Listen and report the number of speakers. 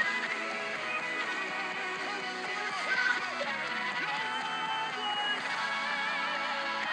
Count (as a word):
zero